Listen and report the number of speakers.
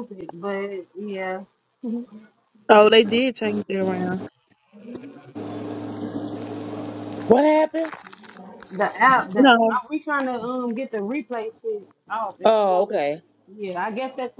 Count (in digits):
3